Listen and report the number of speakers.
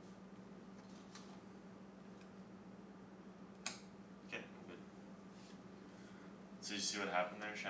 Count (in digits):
1